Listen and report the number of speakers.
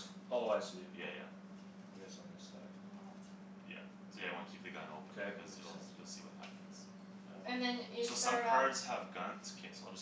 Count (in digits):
3